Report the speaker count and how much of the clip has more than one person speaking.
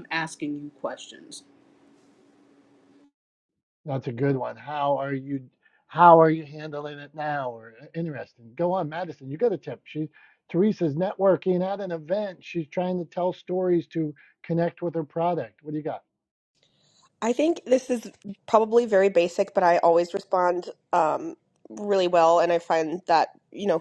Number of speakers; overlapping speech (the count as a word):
three, no overlap